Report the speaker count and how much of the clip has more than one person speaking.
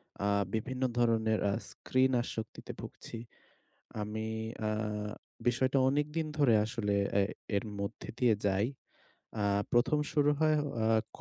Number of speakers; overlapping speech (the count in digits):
1, no overlap